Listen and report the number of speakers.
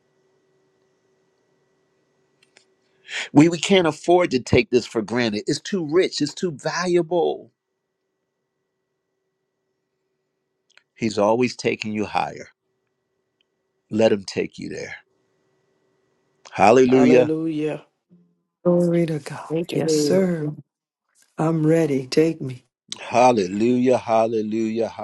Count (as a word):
three